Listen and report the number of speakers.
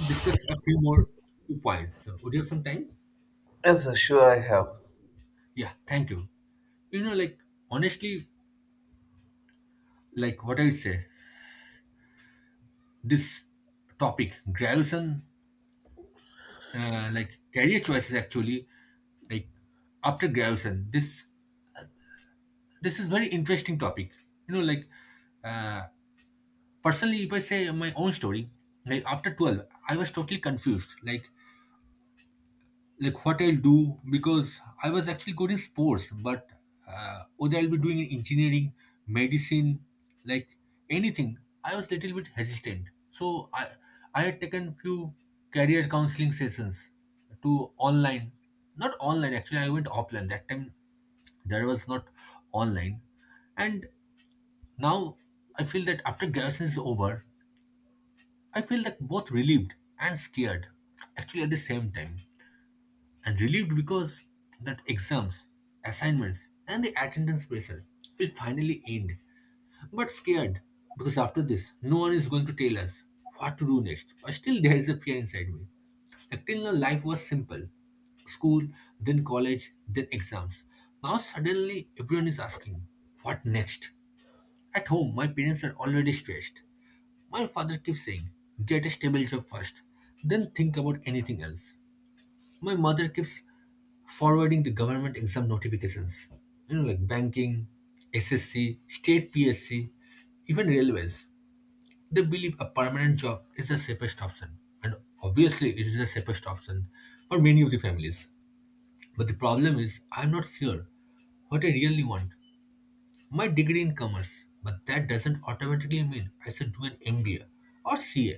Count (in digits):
2